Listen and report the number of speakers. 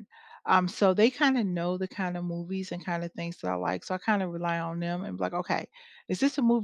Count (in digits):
1